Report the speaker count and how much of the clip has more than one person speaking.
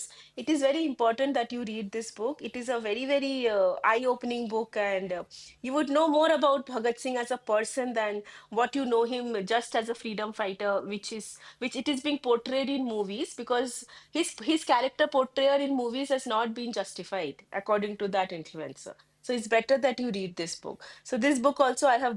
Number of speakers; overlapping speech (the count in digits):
1, no overlap